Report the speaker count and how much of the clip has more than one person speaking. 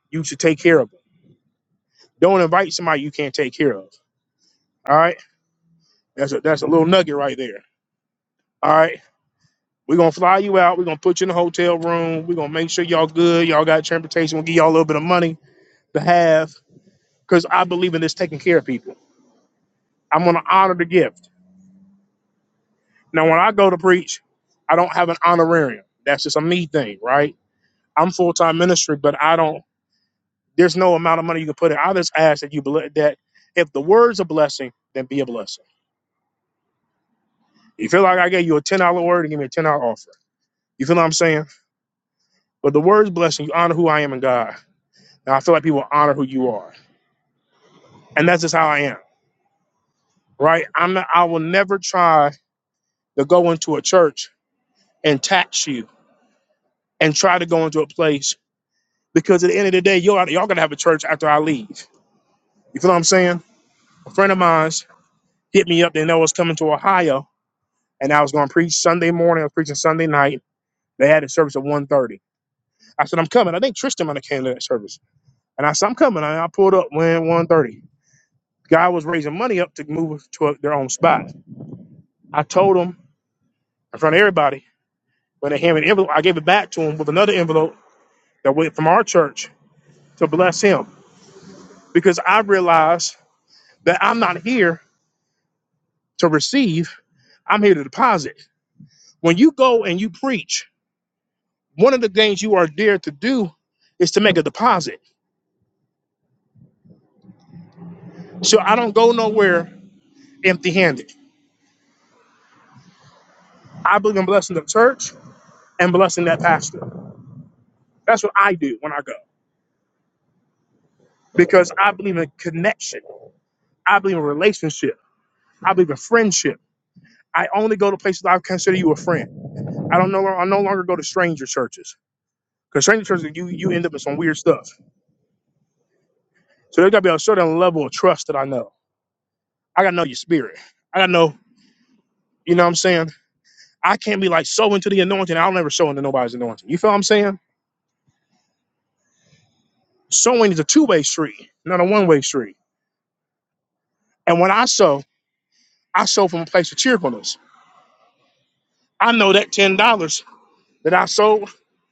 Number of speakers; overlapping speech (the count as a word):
one, no overlap